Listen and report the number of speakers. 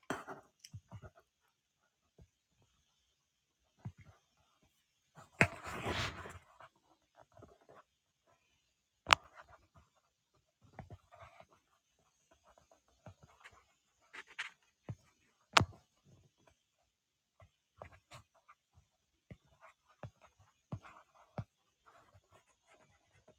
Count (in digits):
0